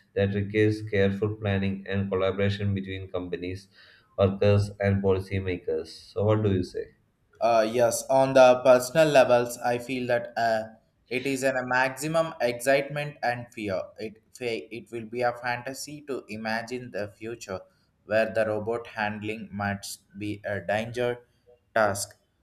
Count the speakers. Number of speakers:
2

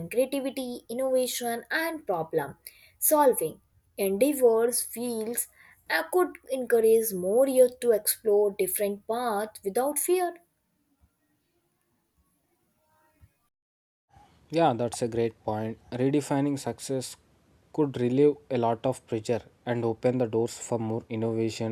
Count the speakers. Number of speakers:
2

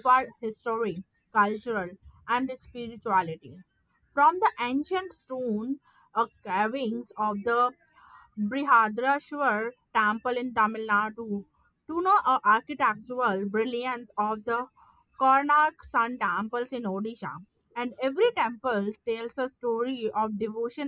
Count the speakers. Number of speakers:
1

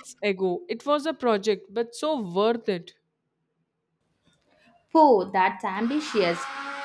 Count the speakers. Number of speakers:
2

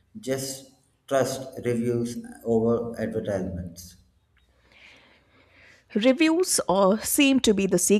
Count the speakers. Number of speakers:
2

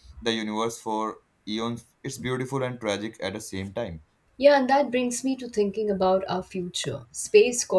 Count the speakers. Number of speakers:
2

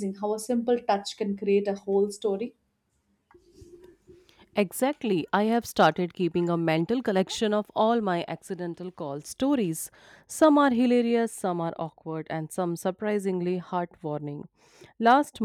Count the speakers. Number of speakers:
2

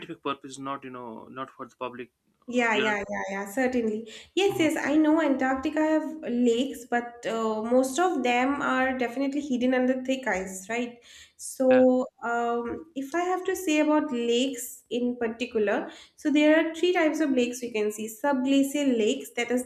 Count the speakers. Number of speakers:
2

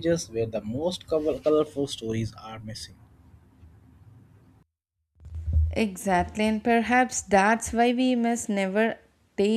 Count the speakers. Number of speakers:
2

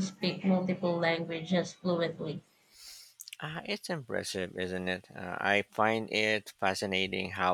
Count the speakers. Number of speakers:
2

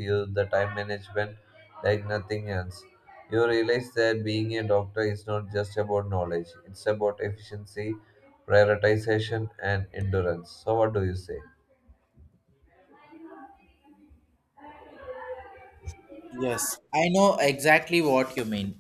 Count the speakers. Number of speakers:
2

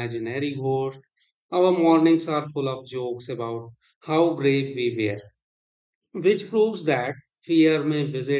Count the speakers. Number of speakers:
1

